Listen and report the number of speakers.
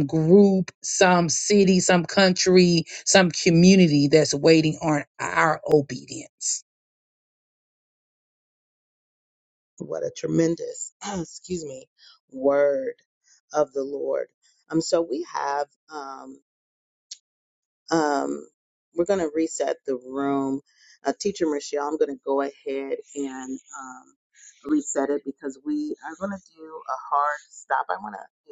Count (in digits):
2